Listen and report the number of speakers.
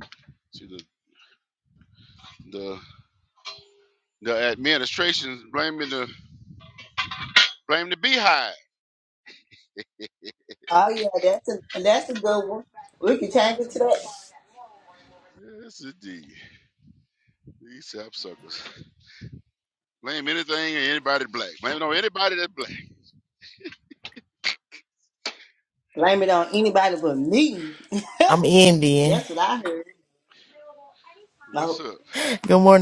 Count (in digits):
3